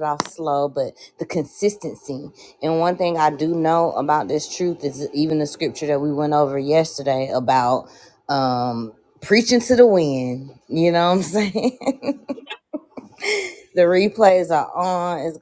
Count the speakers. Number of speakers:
1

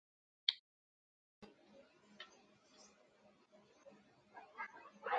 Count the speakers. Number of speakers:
0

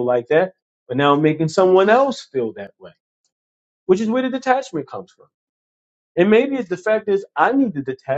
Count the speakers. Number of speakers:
1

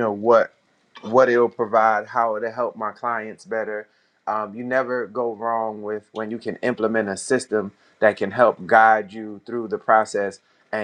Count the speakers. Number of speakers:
1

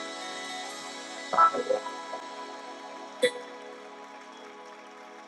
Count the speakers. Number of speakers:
0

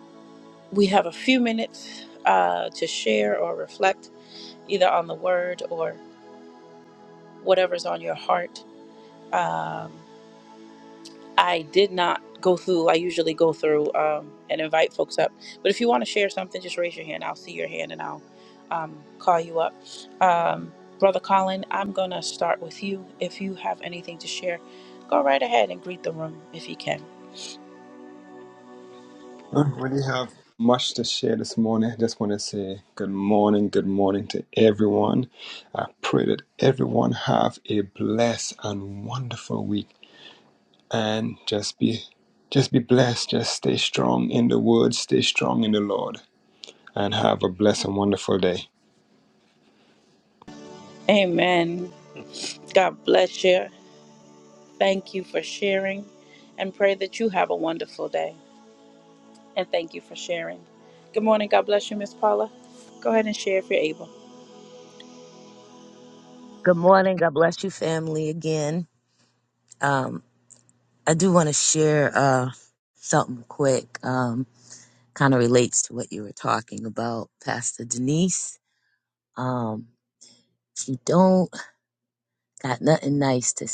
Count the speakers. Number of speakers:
3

